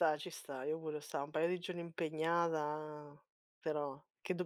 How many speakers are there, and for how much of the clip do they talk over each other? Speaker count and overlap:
1, no overlap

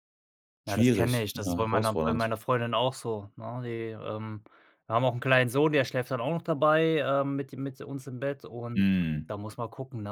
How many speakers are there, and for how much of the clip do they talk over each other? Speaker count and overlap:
2, about 17%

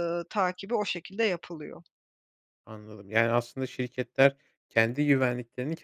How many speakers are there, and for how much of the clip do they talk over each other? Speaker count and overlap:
2, no overlap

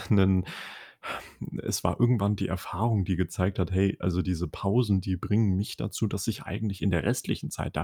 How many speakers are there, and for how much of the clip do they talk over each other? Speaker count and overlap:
1, no overlap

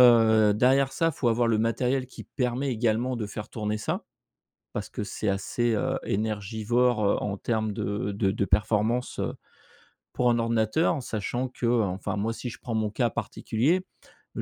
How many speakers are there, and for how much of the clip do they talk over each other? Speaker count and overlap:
1, no overlap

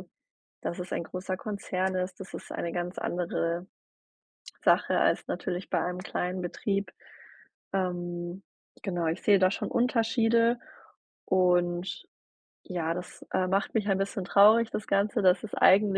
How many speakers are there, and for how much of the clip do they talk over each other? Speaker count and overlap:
1, no overlap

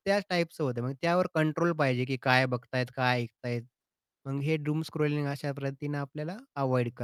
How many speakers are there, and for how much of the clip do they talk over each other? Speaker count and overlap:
1, no overlap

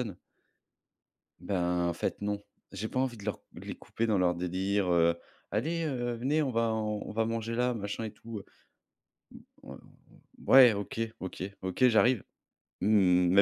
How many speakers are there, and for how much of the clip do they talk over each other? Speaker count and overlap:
1, no overlap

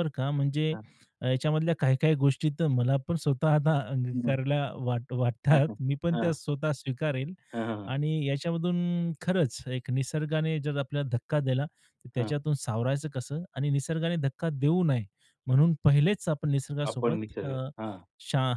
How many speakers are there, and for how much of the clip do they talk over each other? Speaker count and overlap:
2, about 9%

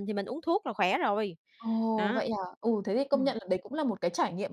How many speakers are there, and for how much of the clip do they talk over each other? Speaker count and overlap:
2, about 8%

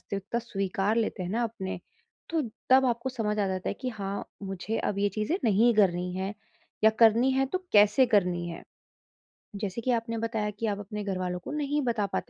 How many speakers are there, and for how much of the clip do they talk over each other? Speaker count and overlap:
1, no overlap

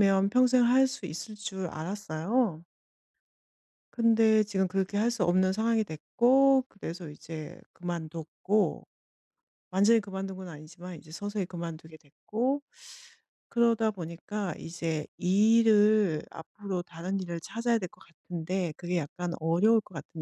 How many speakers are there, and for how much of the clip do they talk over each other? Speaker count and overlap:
1, no overlap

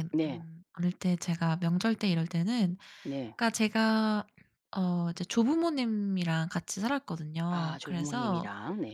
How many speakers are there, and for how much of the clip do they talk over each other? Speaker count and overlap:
2, about 13%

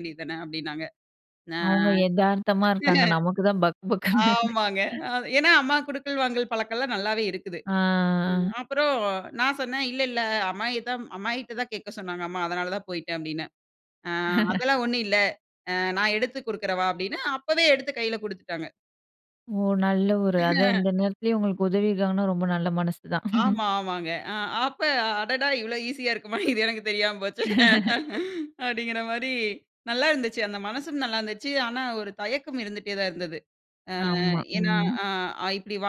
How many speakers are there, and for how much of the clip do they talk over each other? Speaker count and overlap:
2, about 3%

